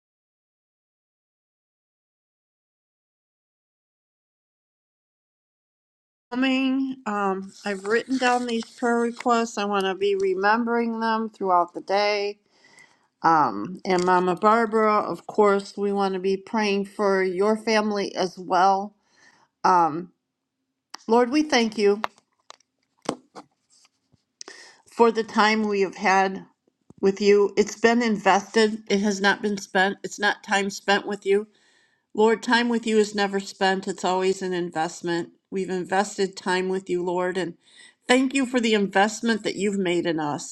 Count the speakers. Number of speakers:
1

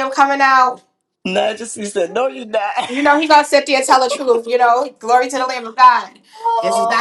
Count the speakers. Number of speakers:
2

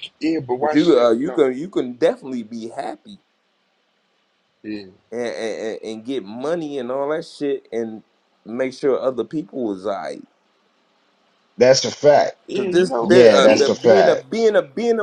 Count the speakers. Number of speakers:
3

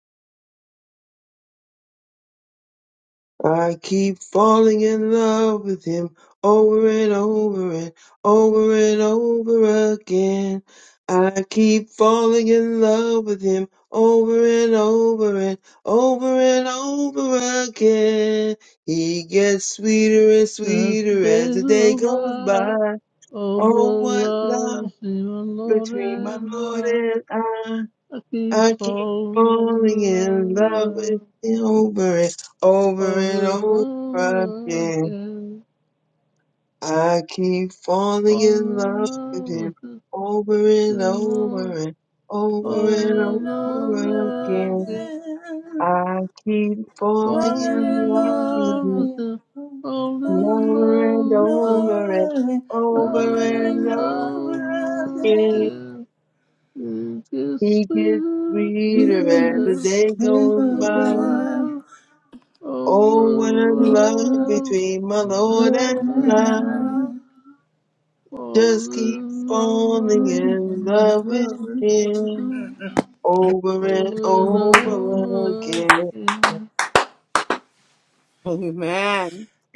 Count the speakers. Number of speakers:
4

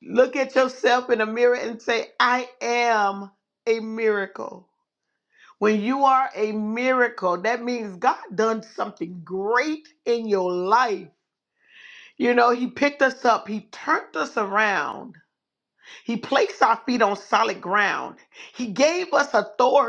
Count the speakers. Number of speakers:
1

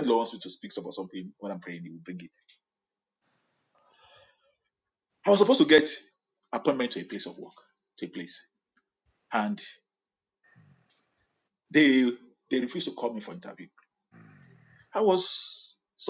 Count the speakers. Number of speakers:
1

